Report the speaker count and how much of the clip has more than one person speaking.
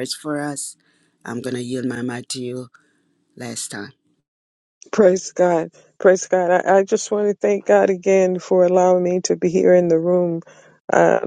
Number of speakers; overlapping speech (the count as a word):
two, no overlap